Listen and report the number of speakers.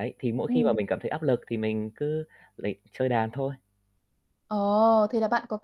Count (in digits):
2